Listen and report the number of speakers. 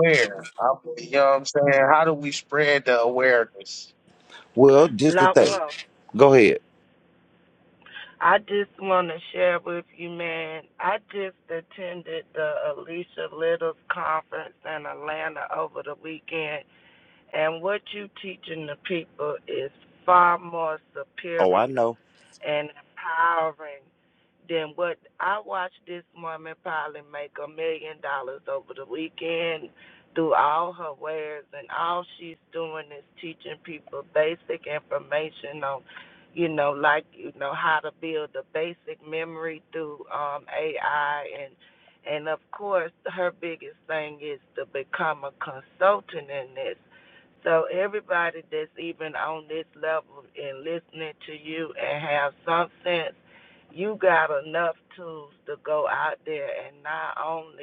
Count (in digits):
3